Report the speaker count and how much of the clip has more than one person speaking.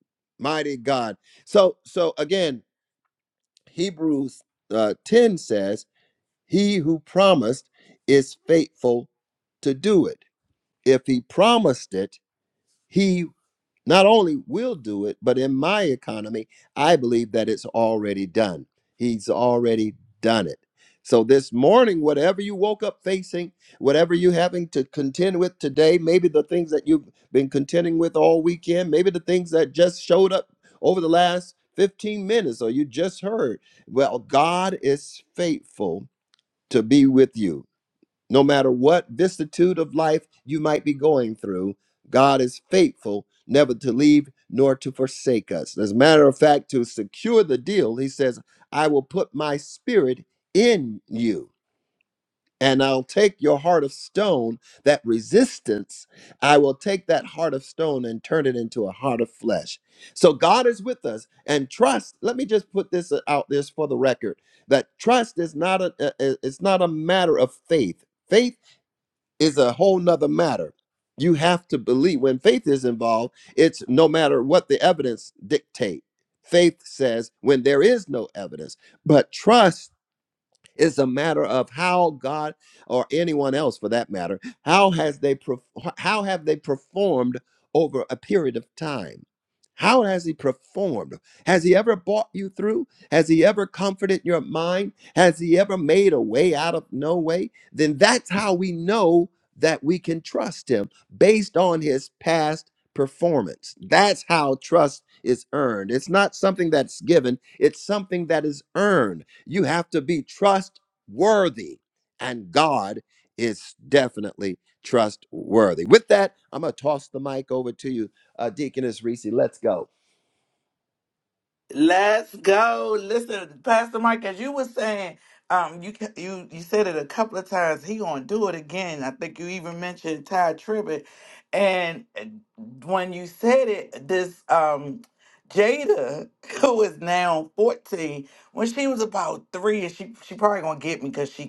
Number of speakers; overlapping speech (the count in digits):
2, no overlap